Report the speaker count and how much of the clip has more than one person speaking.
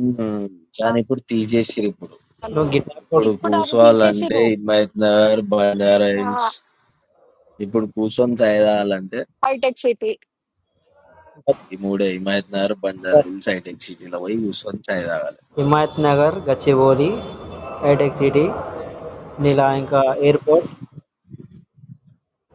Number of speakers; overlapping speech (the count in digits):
3, about 7%